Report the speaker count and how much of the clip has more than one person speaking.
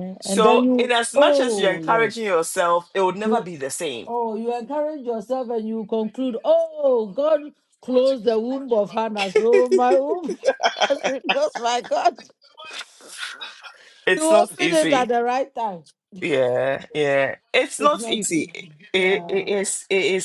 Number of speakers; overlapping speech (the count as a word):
two, about 21%